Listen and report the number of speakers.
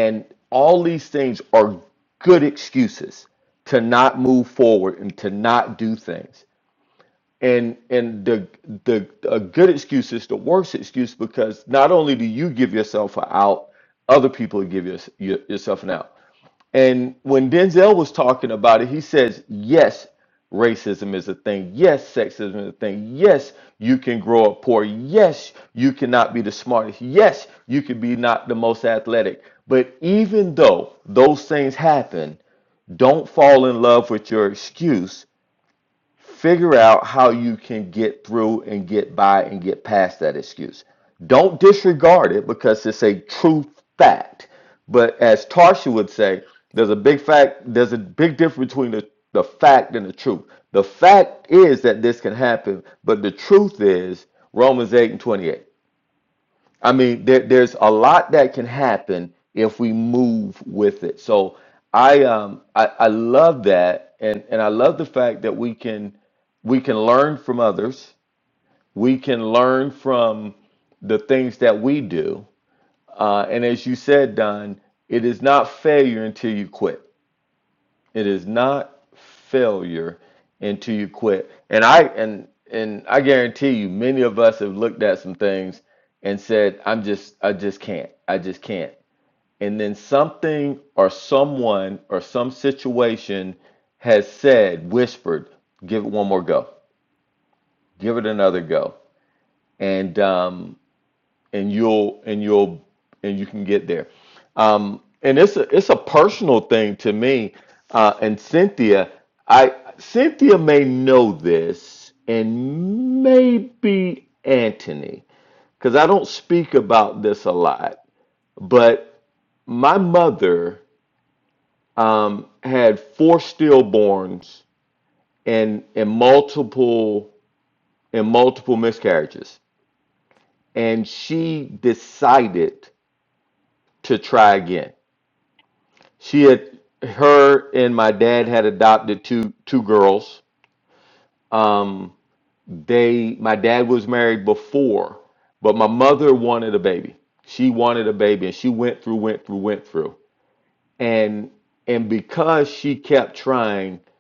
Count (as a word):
one